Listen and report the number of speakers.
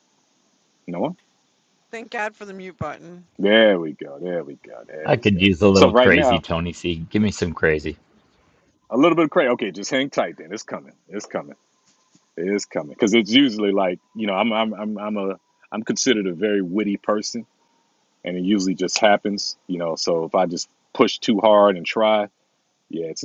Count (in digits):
3